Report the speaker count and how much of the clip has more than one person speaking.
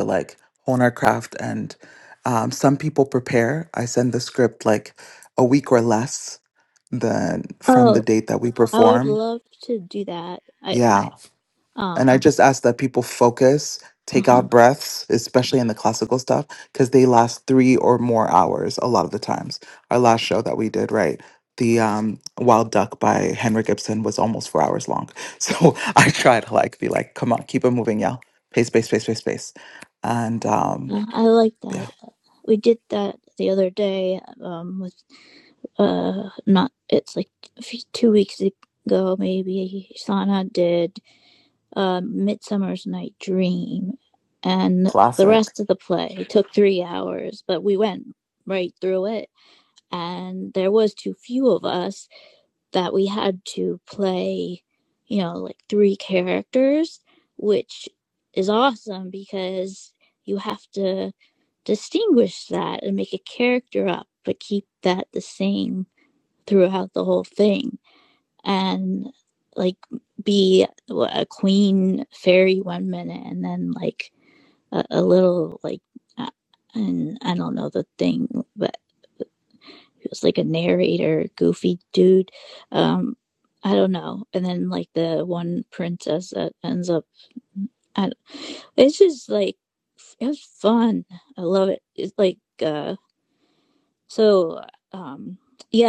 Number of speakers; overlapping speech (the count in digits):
2, about 2%